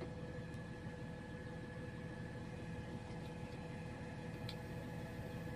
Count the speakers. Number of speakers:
0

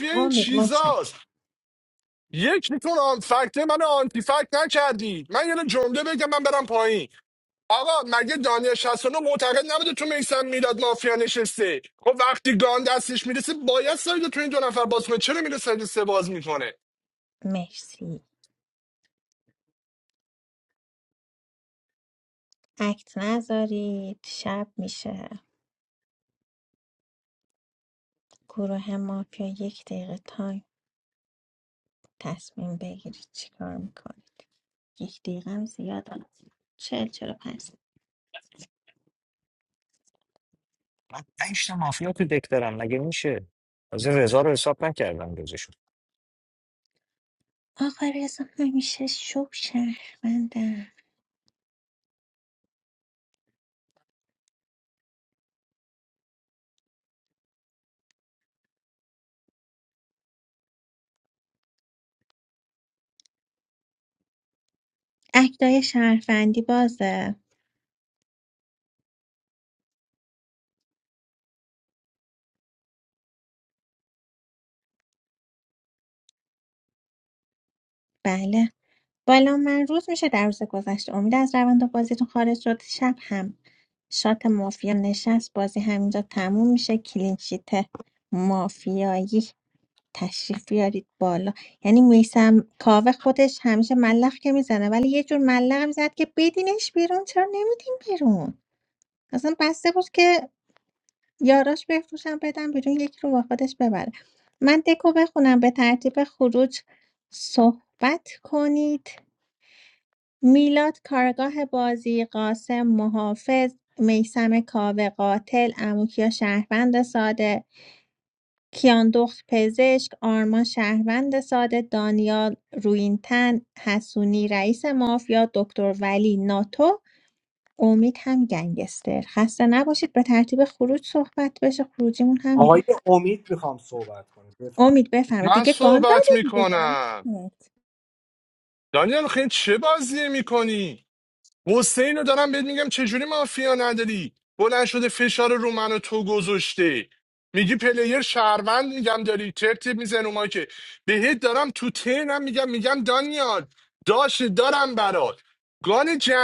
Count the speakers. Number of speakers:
4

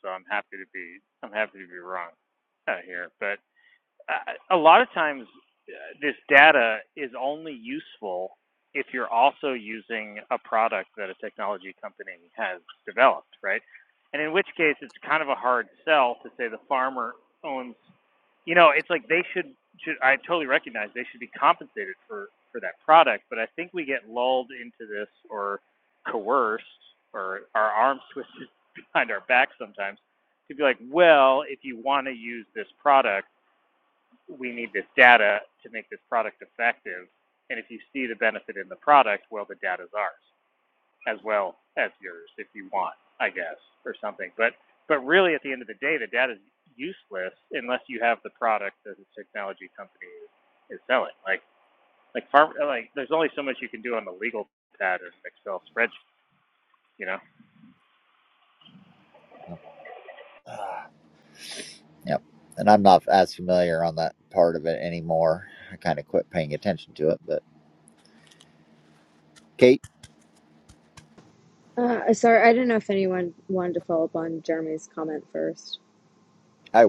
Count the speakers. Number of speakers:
3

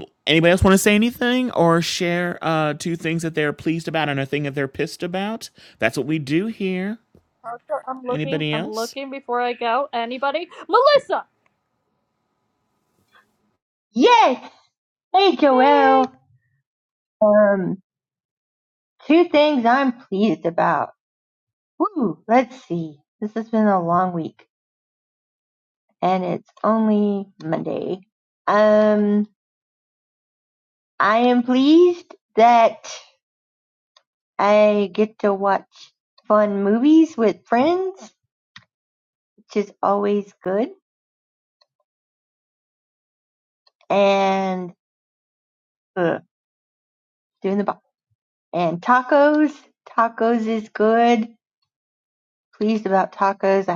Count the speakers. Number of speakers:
3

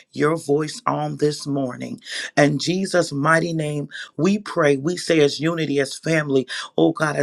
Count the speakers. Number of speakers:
1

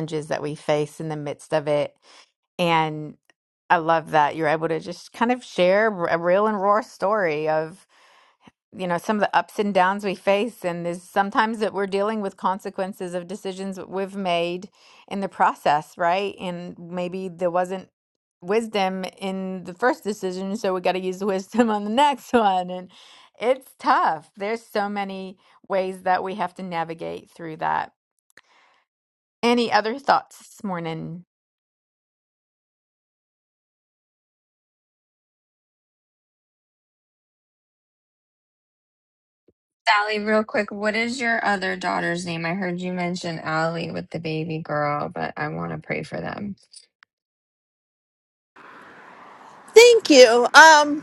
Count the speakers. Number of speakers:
3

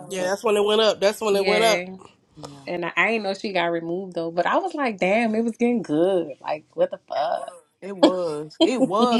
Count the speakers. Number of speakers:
3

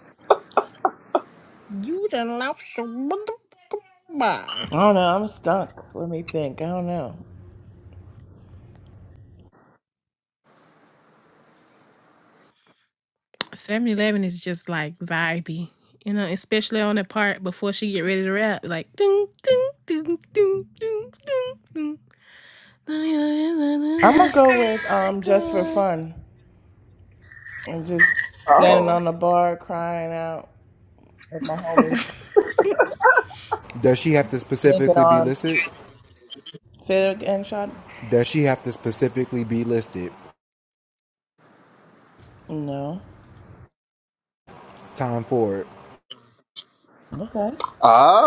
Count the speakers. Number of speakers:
4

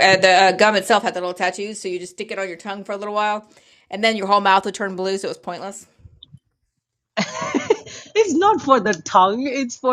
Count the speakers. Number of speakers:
2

